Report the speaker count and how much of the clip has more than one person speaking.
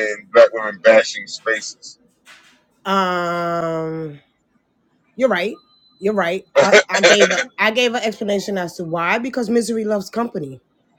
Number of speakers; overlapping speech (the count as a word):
two, no overlap